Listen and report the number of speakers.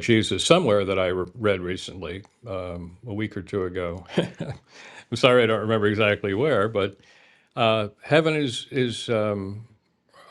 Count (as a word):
one